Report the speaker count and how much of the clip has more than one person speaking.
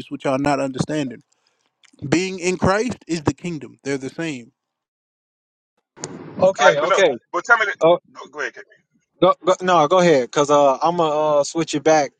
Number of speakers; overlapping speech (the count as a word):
three, about 5%